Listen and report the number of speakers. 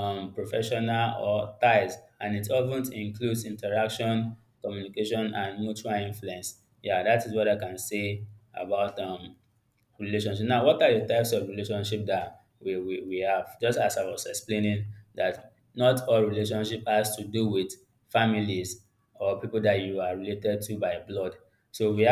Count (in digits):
1